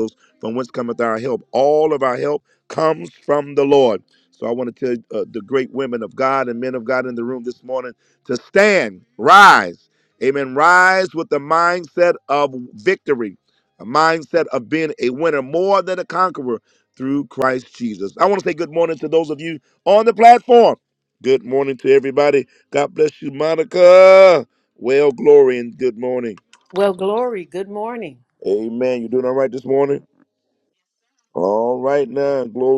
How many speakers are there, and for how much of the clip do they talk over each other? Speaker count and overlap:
2, no overlap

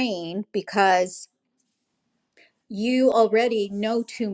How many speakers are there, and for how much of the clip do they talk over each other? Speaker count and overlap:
1, no overlap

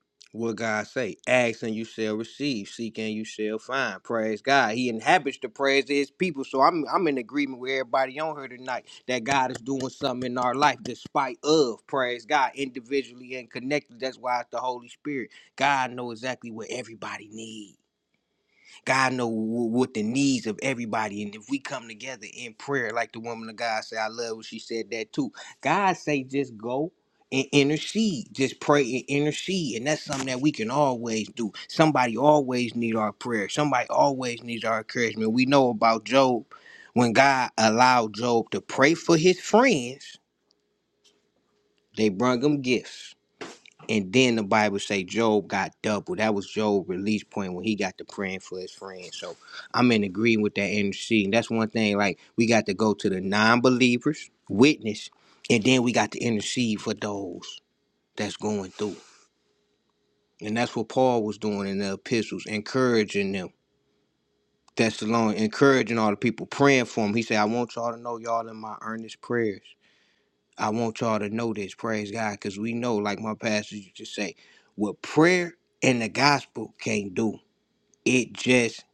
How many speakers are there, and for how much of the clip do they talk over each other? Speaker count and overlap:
1, no overlap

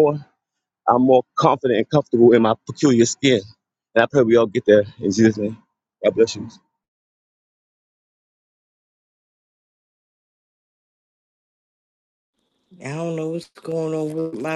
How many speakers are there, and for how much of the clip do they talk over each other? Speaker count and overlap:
2, no overlap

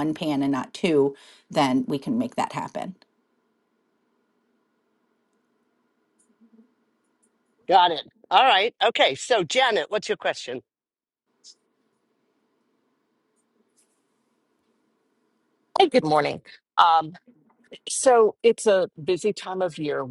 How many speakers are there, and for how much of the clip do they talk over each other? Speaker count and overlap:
3, no overlap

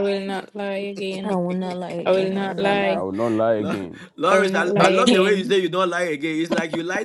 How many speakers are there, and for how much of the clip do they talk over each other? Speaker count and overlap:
4, about 37%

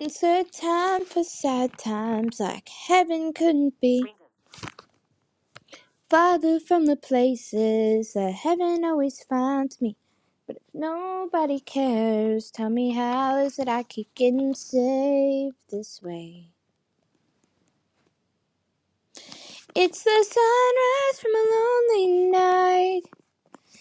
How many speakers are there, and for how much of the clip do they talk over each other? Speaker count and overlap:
1, no overlap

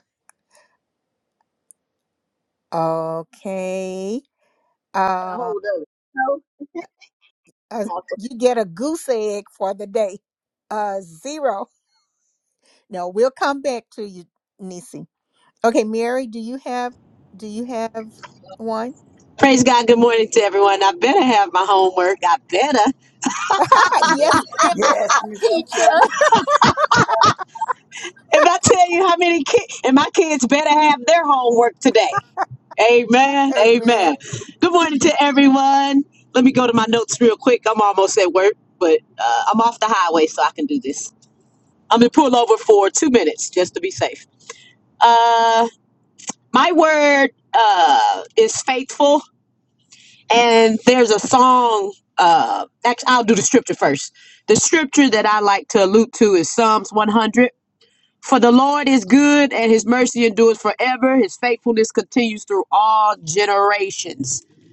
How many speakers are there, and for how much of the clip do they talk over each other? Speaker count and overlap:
4, about 3%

